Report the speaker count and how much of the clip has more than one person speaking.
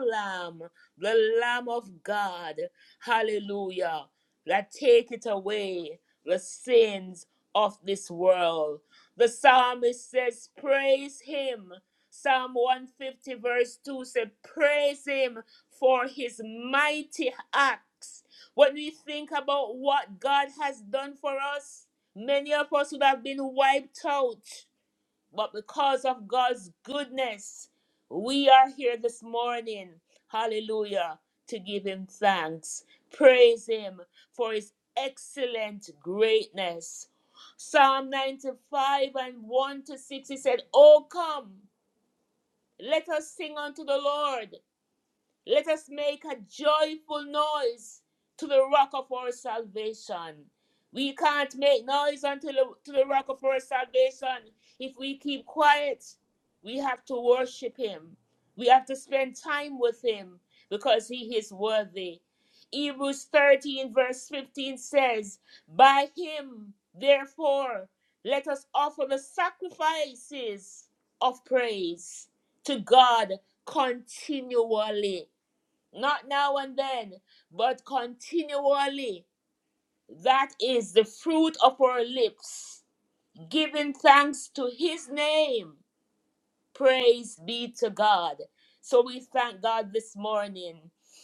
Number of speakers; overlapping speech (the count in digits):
1, no overlap